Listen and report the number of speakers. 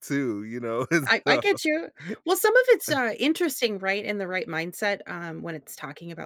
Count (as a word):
two